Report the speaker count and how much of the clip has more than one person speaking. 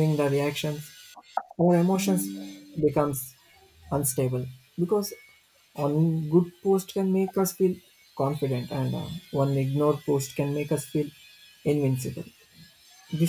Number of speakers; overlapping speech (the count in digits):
1, no overlap